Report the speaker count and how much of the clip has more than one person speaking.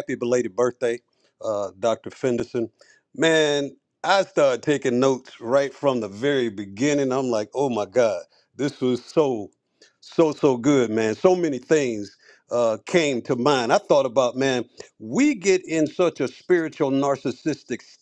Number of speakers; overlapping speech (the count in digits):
1, no overlap